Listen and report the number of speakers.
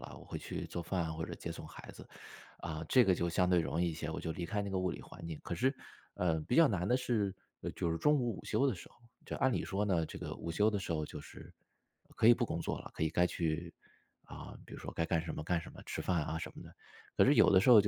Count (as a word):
one